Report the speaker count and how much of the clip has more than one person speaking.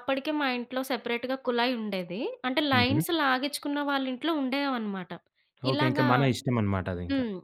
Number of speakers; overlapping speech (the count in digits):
2, about 12%